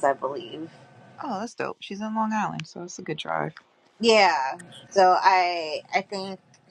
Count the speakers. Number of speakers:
2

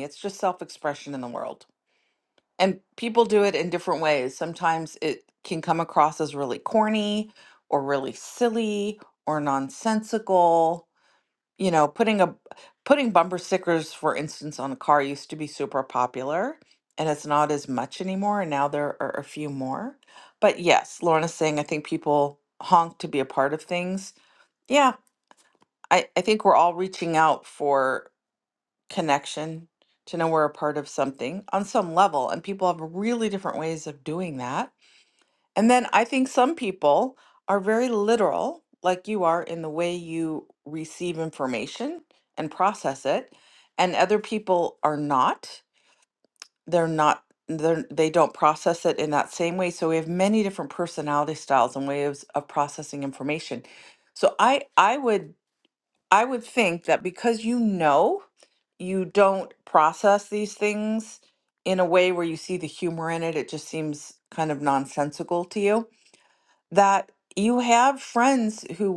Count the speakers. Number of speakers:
1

